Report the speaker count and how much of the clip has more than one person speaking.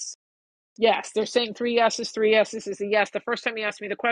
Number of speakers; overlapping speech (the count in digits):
1, no overlap